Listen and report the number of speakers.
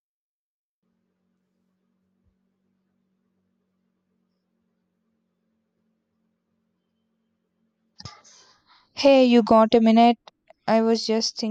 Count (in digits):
1